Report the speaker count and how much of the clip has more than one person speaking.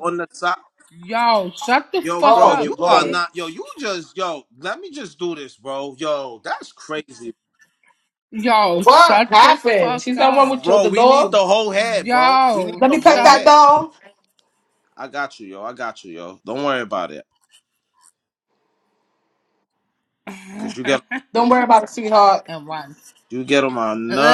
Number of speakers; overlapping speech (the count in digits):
3, about 24%